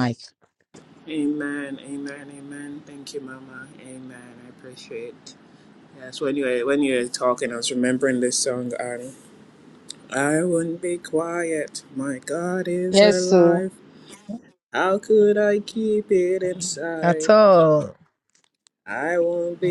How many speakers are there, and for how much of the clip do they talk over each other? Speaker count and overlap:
two, about 6%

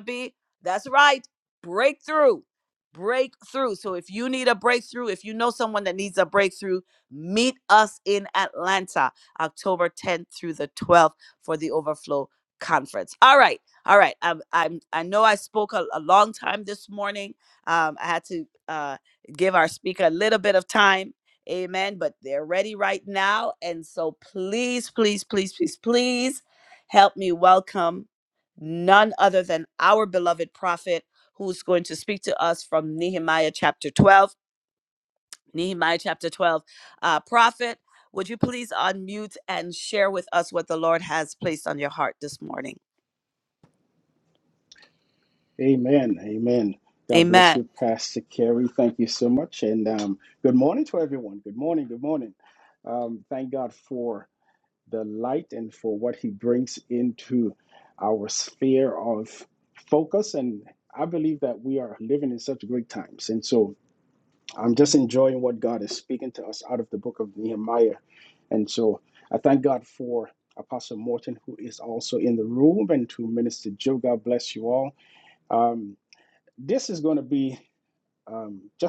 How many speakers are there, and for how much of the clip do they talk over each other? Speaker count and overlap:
two, about 1%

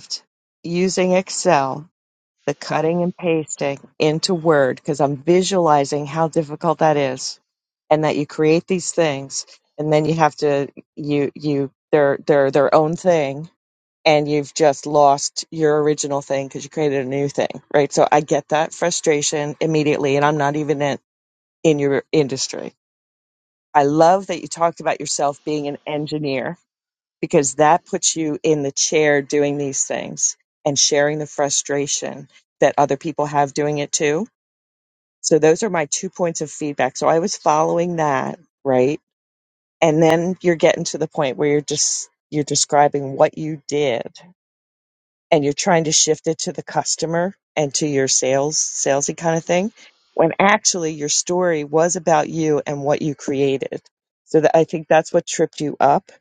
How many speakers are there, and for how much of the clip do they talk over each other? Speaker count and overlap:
one, no overlap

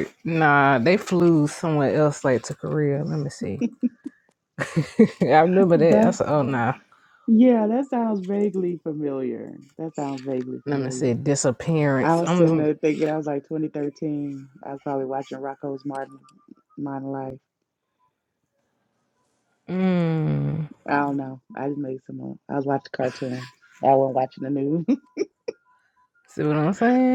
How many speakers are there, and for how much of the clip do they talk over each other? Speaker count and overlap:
two, about 5%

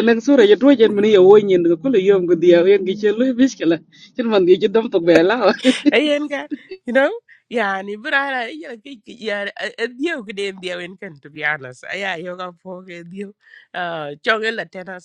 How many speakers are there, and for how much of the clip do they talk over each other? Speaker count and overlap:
two, no overlap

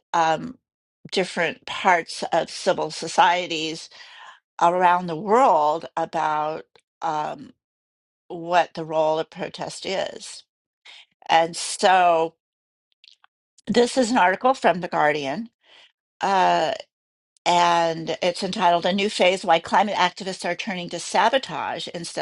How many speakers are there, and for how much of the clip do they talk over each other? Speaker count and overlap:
one, no overlap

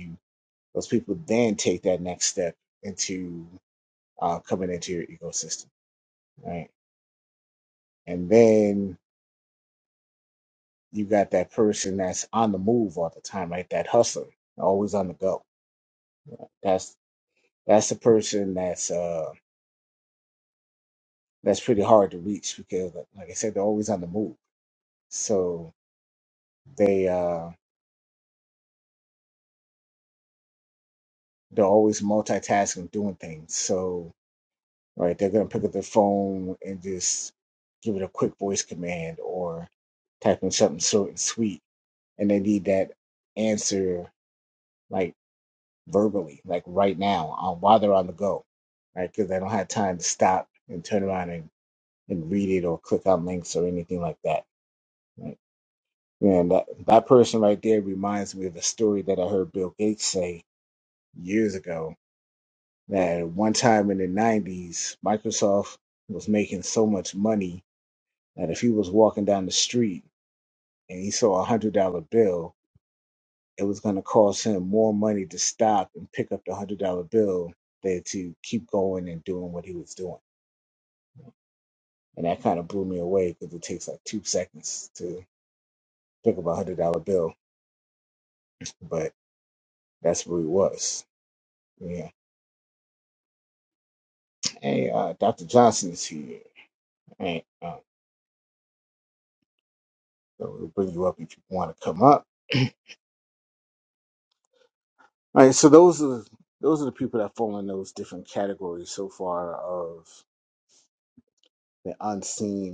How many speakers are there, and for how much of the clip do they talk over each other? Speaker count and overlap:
one, no overlap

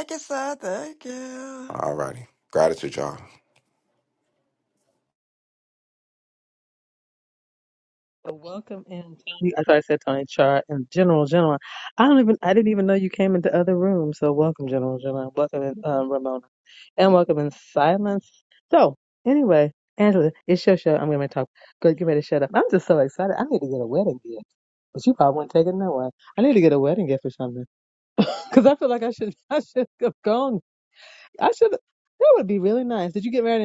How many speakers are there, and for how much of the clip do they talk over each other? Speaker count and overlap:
three, under 1%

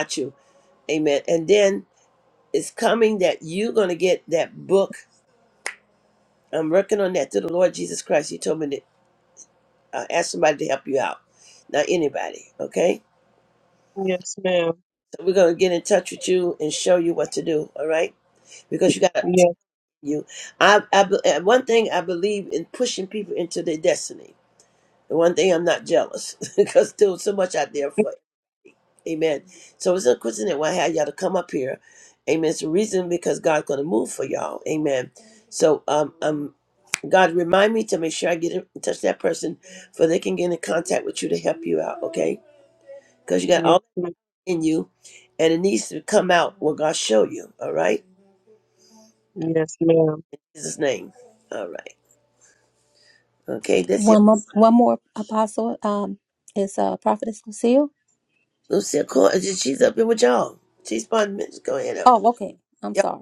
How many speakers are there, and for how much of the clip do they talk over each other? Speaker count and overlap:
three, about 1%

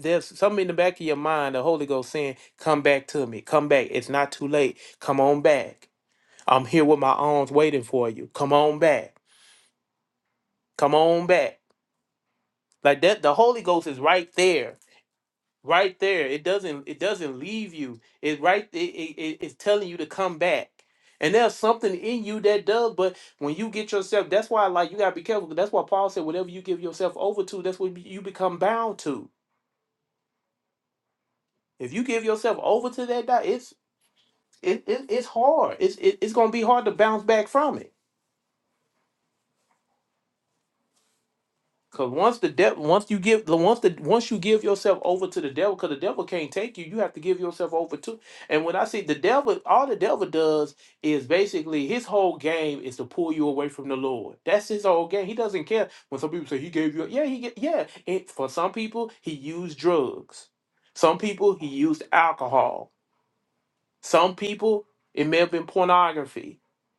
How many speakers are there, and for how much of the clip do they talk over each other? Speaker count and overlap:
one, no overlap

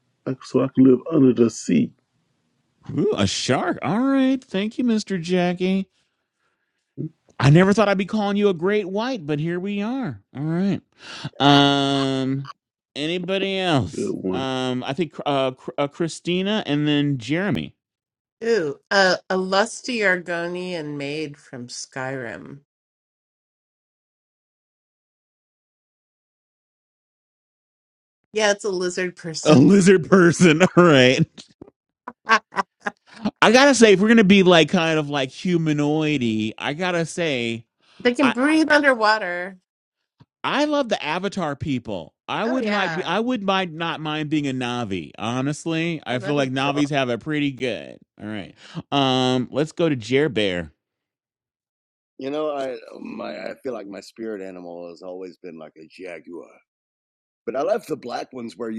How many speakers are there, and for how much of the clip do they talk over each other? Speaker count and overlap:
four, about 3%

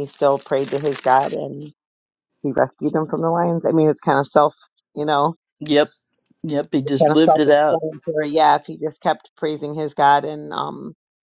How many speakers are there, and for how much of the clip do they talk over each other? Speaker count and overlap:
two, about 8%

